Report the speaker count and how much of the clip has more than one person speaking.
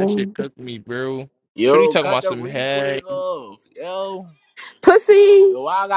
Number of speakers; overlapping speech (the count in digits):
3, about 29%